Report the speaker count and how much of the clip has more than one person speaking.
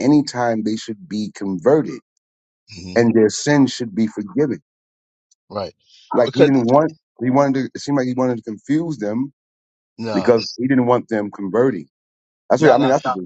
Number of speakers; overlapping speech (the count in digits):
2, about 6%